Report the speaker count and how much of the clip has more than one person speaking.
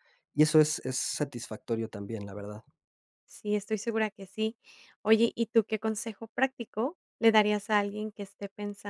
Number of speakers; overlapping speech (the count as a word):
two, no overlap